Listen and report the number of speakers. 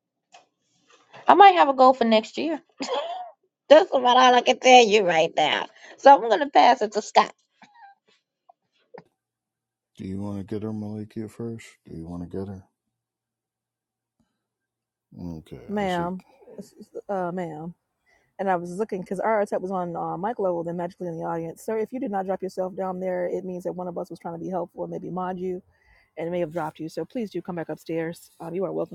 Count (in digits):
3